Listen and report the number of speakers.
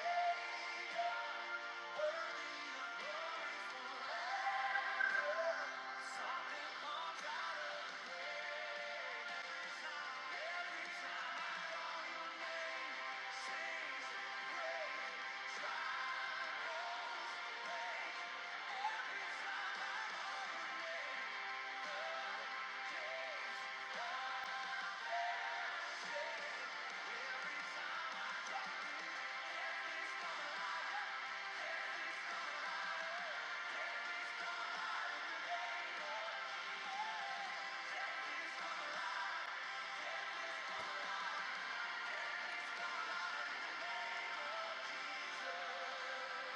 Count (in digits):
0